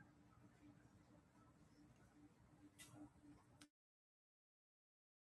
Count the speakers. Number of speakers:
zero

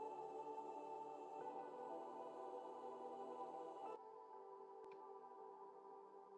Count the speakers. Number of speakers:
zero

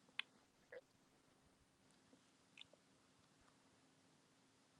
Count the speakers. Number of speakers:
zero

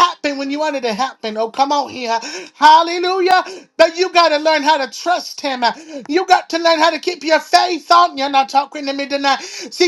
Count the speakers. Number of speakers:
one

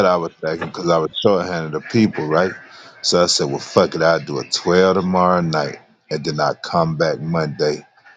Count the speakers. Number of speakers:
one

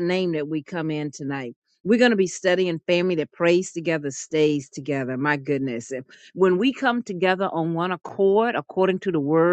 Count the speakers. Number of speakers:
one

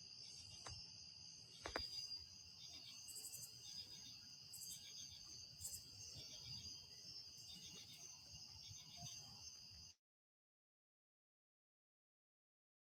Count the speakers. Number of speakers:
zero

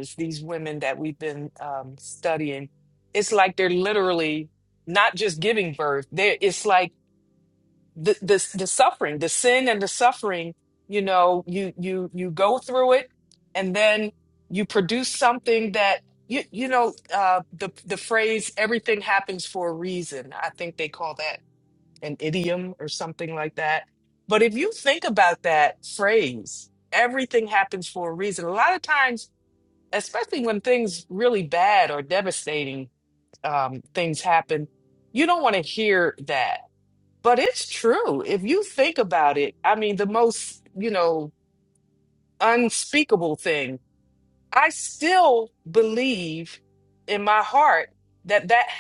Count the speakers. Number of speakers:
one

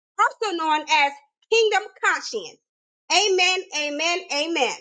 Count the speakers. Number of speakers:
one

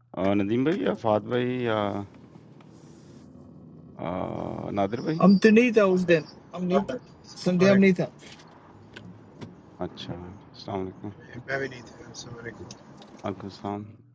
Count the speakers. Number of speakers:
three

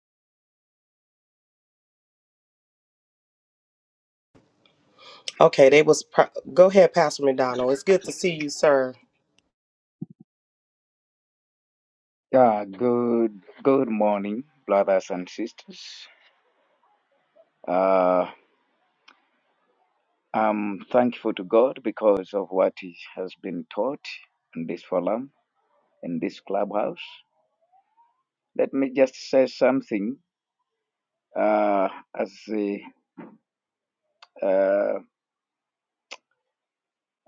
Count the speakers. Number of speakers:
two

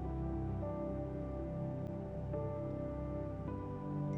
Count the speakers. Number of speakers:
zero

